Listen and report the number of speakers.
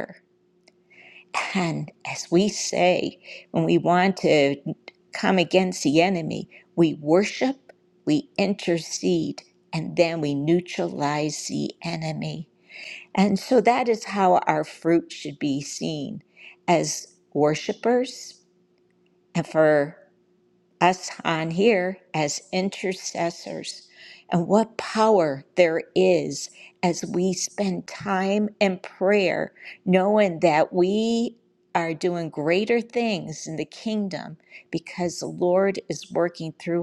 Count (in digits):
1